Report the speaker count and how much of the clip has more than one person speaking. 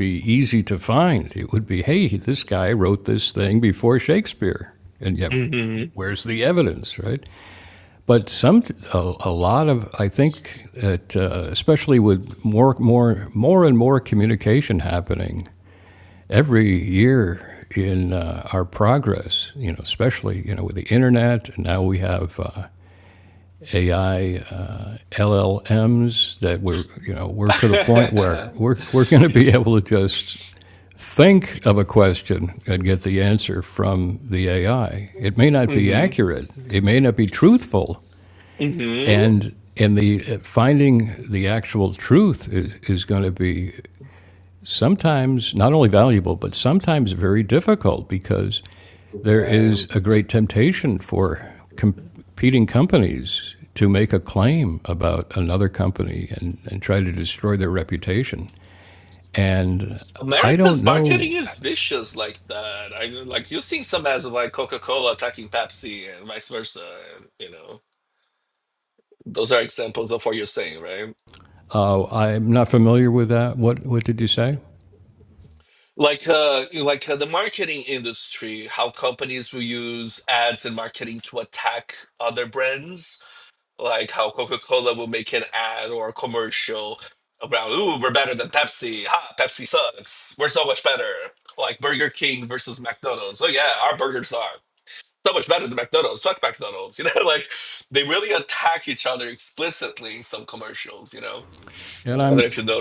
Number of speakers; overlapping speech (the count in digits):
2, about 3%